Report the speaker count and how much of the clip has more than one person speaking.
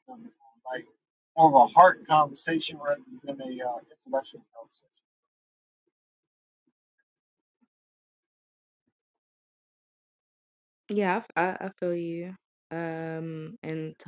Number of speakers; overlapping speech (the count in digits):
2, no overlap